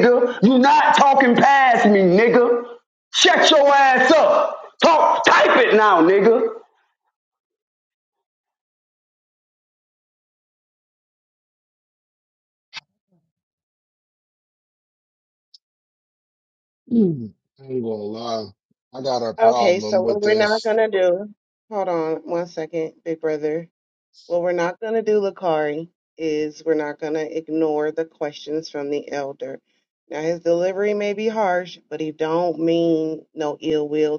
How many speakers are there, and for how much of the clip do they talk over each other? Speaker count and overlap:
three, about 4%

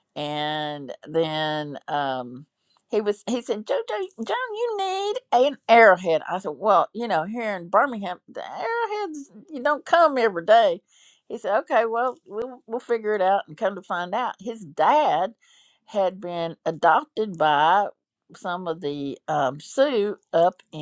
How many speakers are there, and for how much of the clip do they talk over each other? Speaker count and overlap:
one, no overlap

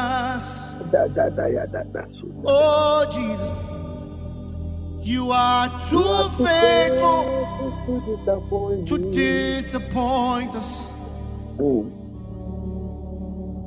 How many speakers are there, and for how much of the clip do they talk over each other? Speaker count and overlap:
two, about 12%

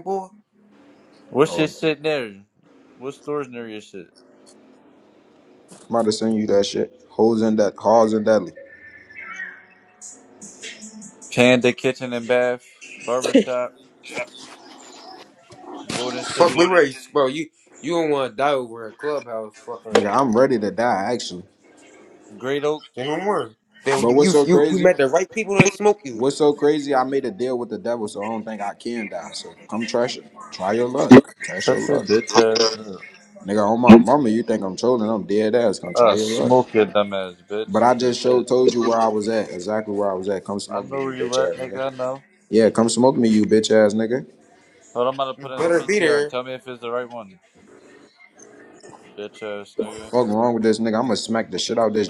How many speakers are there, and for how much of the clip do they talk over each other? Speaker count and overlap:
three, about 11%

